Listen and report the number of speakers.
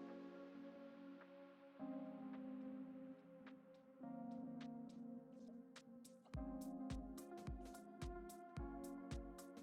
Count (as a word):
zero